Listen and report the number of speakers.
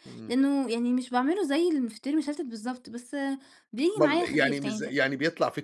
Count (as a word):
two